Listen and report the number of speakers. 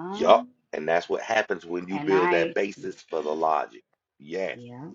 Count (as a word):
two